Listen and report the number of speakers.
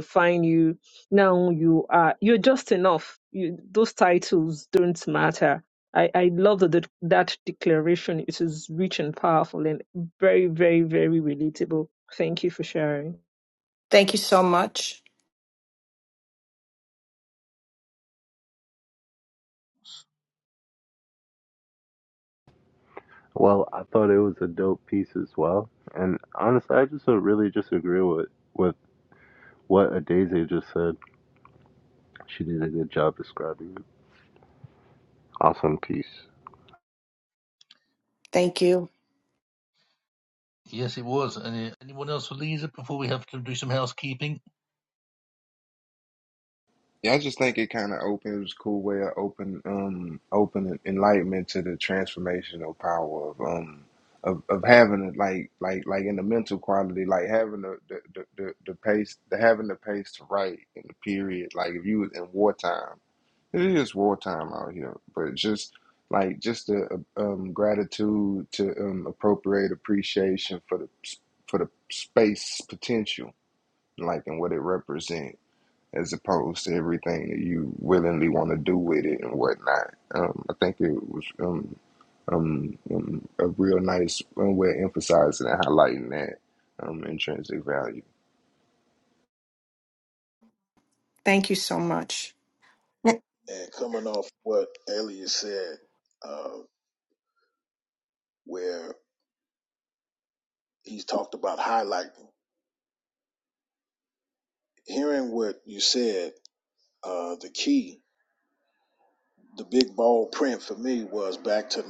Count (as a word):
six